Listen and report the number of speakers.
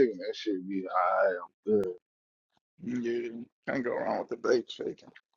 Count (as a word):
two